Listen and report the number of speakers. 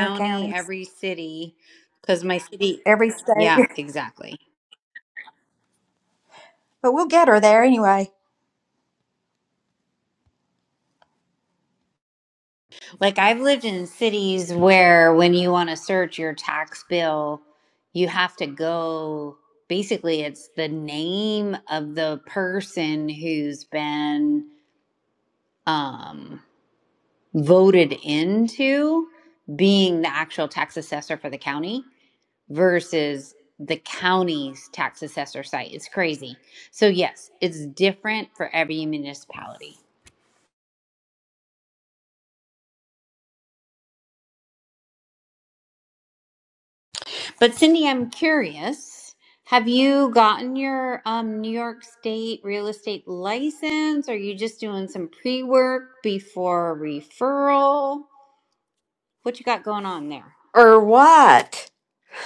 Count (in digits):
3